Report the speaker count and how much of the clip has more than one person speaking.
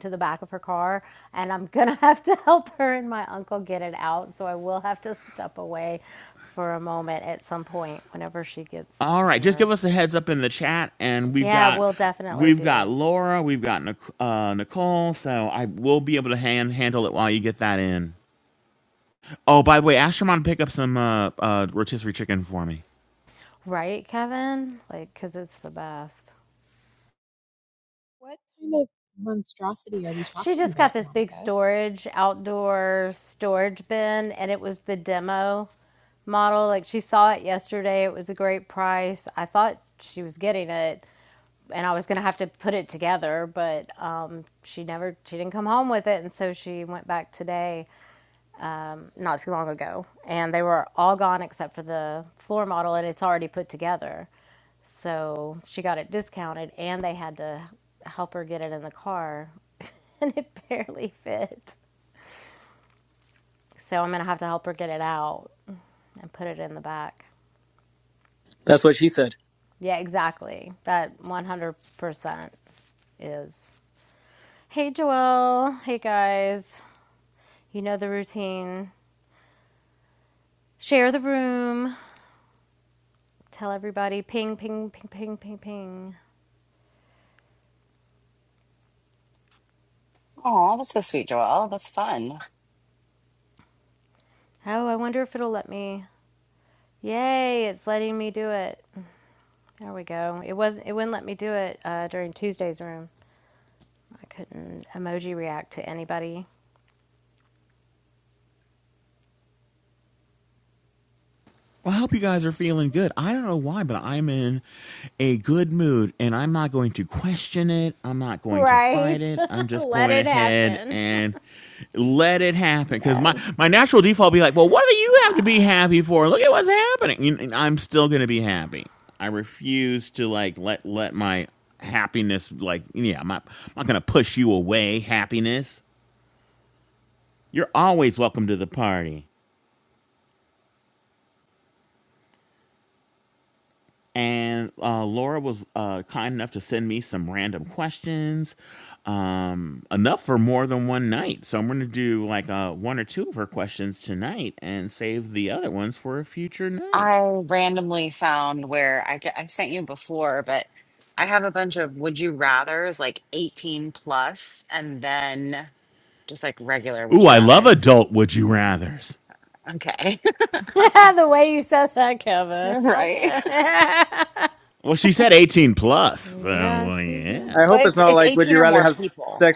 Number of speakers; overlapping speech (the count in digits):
5, about 5%